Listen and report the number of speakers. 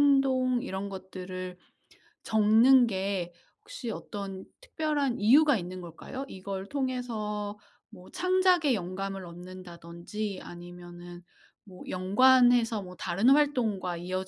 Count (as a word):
one